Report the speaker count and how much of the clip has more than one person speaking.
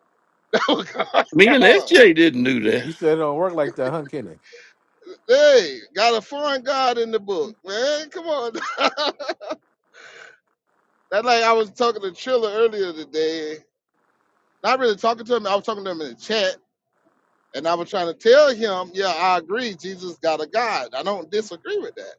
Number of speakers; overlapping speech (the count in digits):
3, about 2%